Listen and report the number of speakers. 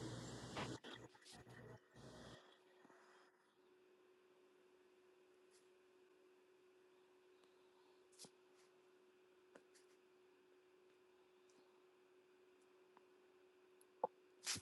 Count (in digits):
0